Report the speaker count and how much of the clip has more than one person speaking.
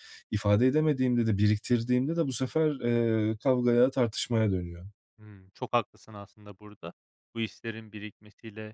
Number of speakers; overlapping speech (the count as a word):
two, no overlap